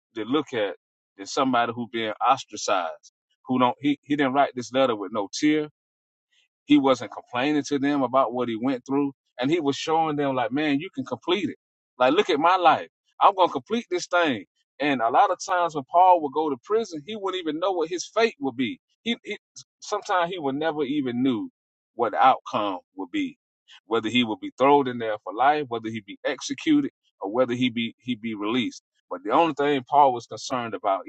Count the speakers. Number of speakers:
1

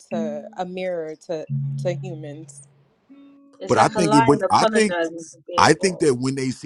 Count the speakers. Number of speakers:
3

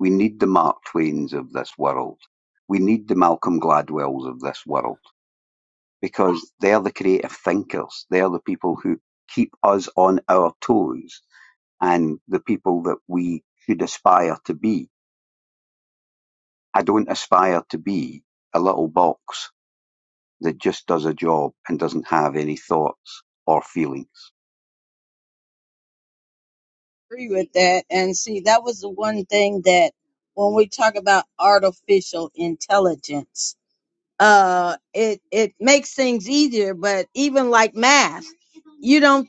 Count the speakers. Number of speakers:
2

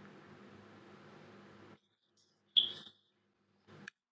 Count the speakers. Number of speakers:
0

